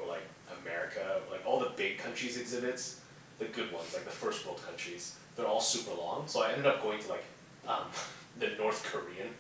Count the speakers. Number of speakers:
one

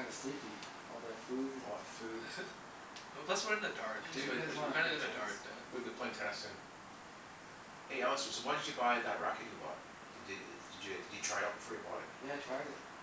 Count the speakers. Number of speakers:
three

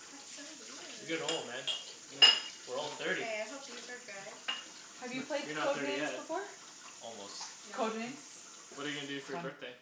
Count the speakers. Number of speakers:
four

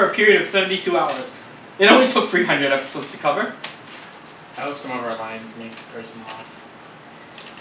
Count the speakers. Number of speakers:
two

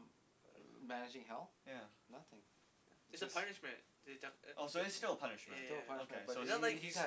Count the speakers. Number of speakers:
three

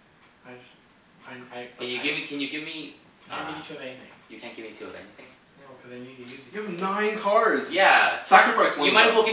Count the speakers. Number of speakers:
three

